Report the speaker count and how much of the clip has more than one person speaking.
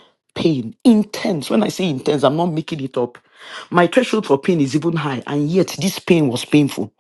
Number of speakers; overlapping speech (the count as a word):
one, no overlap